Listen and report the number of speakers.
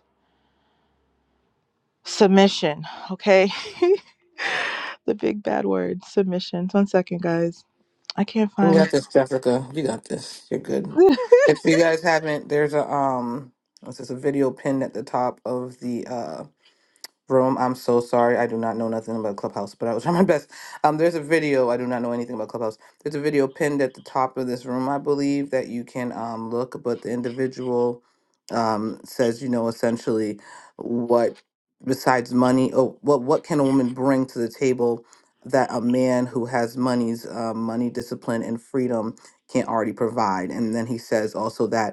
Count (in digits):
2